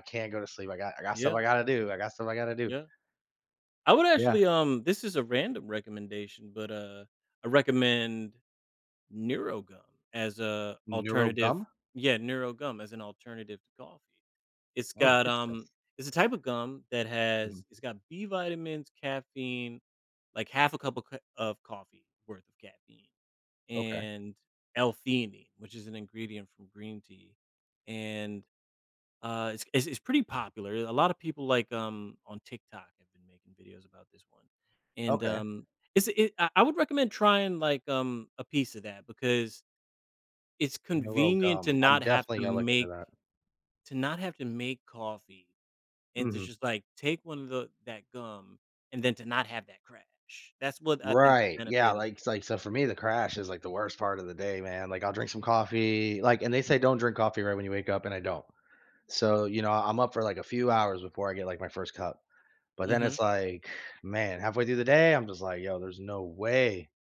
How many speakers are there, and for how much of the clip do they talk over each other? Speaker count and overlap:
two, about 9%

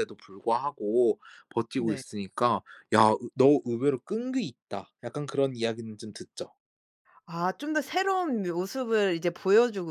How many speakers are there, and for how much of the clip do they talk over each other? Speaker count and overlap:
two, about 2%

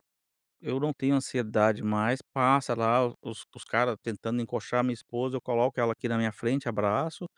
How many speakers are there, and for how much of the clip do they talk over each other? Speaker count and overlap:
one, no overlap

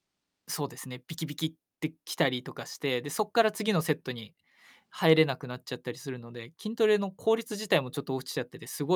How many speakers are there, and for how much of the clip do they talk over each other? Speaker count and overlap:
one, no overlap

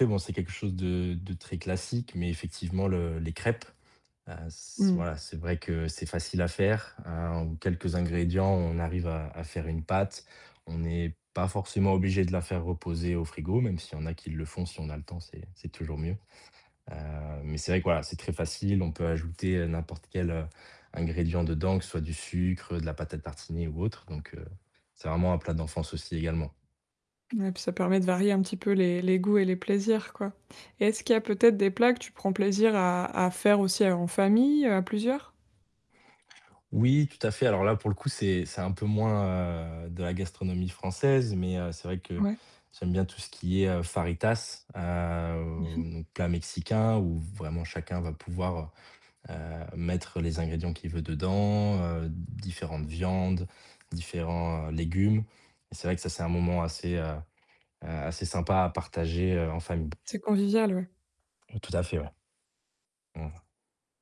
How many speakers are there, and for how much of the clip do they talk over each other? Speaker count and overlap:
two, about 1%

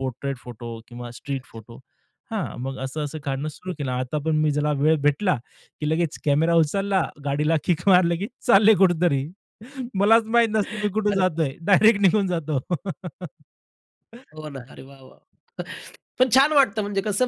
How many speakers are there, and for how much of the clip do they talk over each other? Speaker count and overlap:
two, about 1%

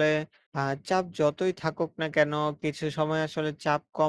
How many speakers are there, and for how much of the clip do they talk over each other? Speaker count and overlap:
one, no overlap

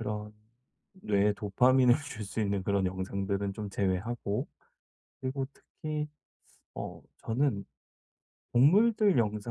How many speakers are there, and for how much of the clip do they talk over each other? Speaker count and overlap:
one, no overlap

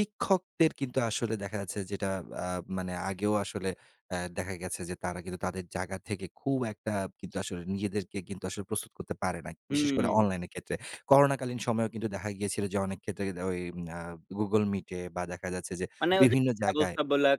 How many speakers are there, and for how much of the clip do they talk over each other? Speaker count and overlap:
two, about 8%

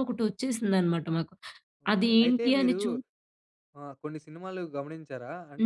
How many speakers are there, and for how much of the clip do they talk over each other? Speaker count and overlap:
two, about 18%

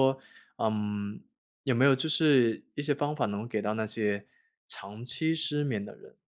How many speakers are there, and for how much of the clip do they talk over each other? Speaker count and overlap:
one, no overlap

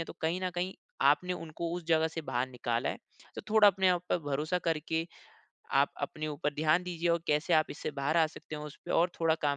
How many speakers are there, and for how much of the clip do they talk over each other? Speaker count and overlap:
one, no overlap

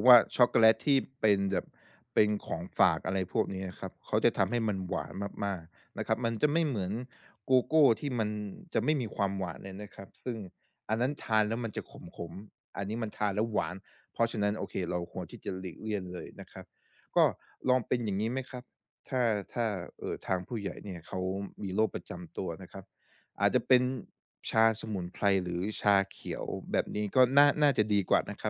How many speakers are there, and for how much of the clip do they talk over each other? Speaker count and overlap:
one, no overlap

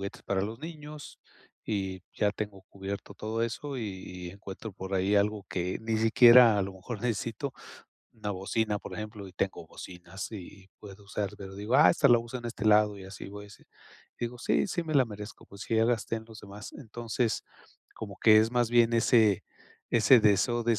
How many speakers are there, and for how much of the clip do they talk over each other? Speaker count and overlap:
one, no overlap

